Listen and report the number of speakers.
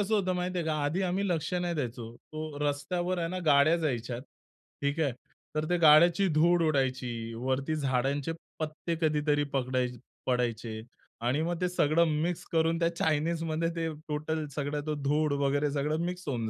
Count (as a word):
one